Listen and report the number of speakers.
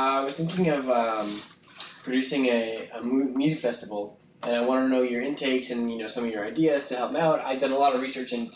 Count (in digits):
1